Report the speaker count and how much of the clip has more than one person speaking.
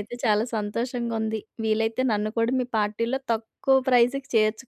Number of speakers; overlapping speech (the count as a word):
one, no overlap